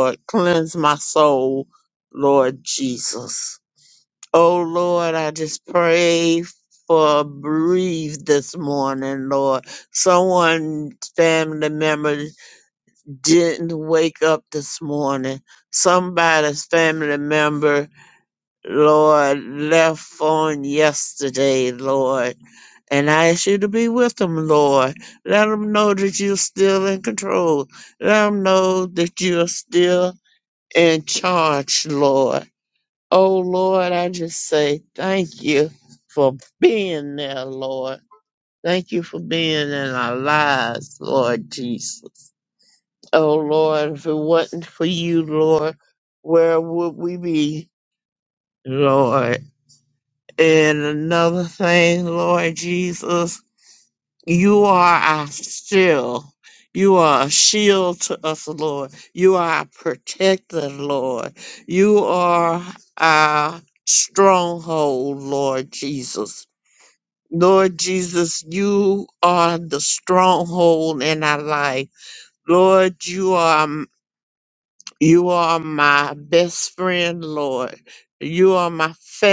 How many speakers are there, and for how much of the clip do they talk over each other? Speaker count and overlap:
1, no overlap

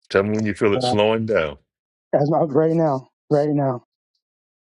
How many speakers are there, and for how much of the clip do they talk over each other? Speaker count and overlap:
2, about 4%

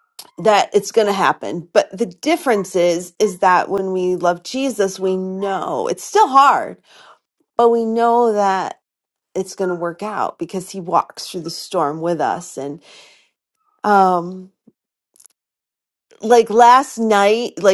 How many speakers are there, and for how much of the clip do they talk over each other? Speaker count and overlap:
1, no overlap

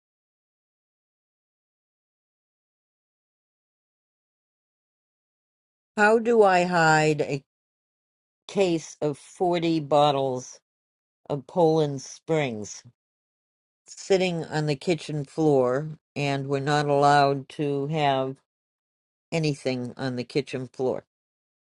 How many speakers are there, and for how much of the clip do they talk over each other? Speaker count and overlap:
1, no overlap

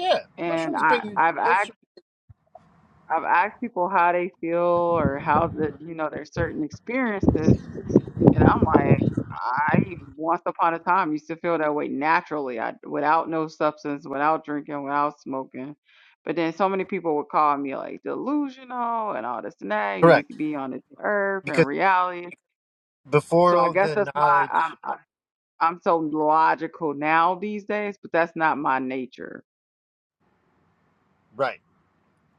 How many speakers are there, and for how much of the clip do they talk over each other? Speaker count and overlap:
2, about 7%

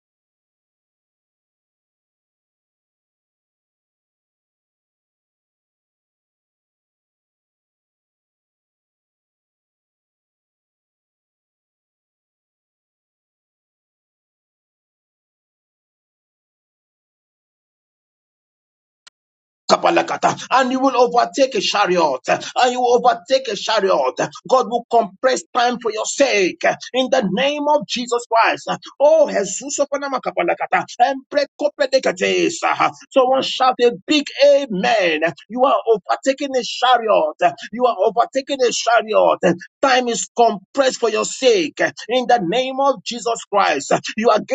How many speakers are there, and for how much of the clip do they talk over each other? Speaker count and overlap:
1, no overlap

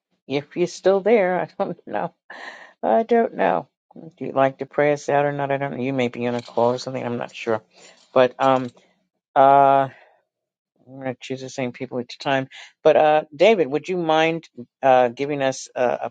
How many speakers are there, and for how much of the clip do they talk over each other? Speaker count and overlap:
1, no overlap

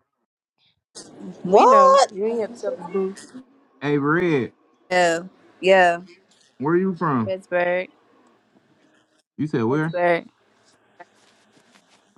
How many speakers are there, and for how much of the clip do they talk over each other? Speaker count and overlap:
3, about 7%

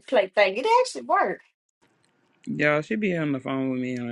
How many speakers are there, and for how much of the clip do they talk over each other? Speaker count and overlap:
2, no overlap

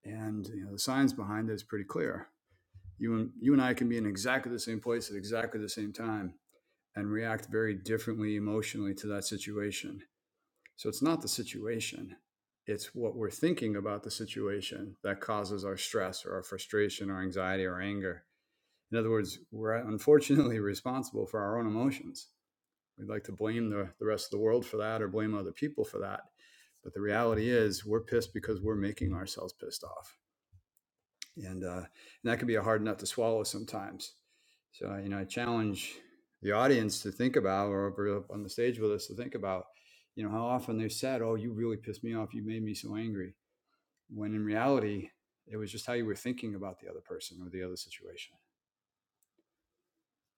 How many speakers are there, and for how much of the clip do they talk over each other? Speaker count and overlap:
1, no overlap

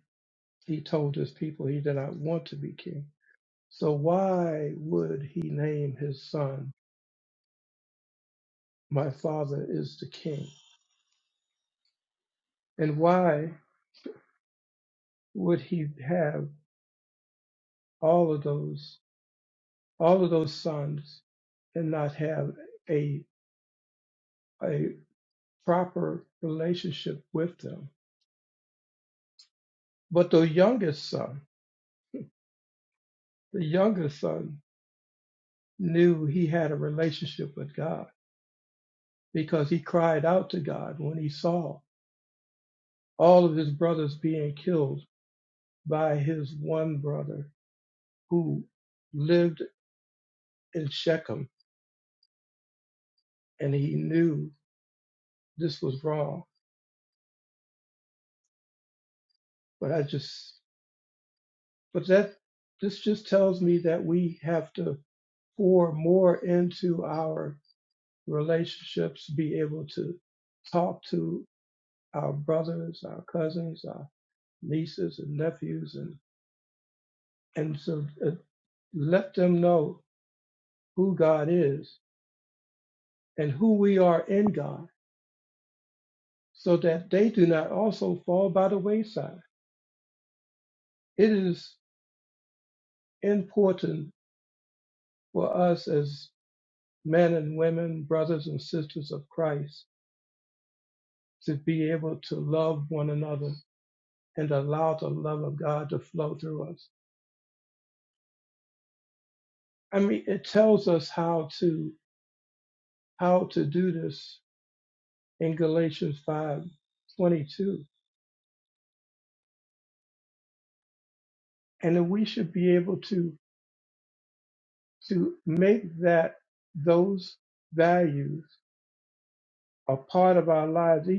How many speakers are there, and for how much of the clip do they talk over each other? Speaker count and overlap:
1, no overlap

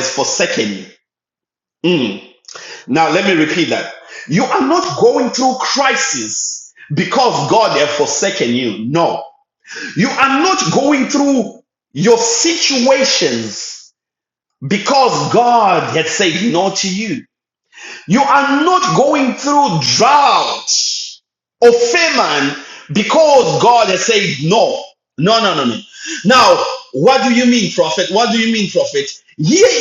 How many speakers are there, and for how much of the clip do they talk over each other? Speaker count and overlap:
1, no overlap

